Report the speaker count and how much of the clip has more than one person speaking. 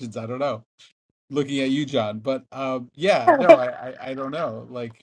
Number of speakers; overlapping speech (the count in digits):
1, no overlap